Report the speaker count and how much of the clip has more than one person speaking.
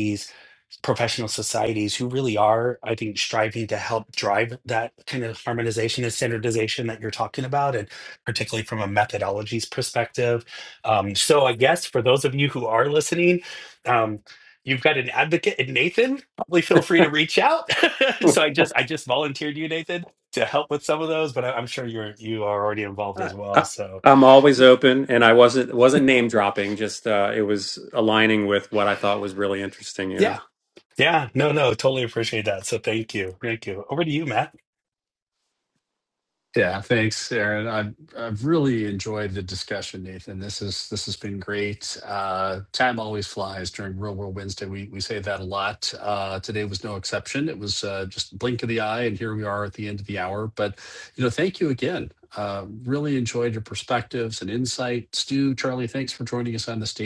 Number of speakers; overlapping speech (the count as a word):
three, about 1%